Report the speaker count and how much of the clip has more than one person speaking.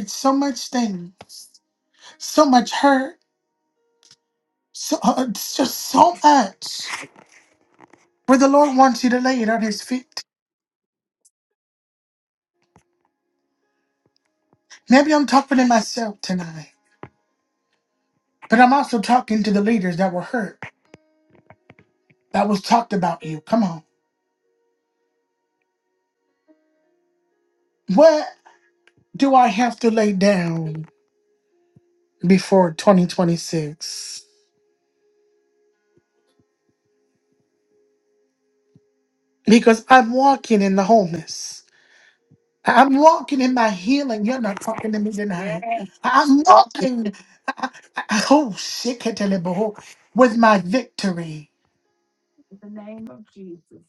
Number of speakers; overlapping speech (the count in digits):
2, under 1%